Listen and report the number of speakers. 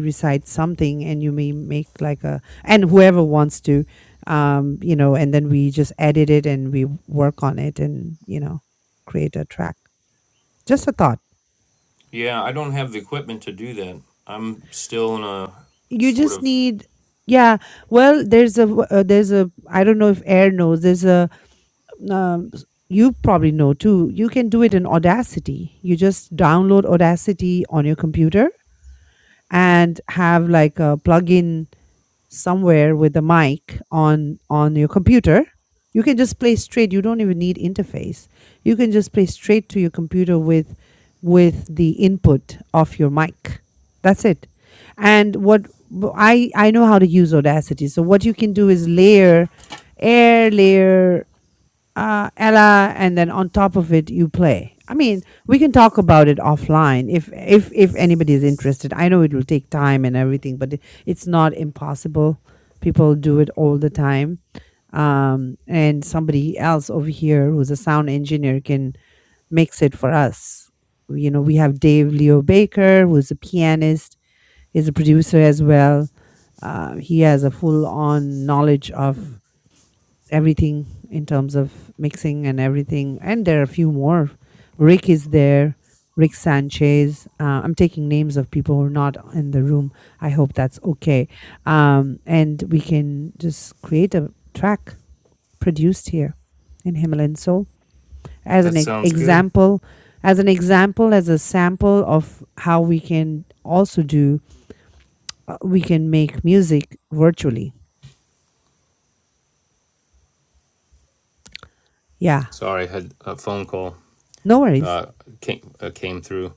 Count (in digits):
2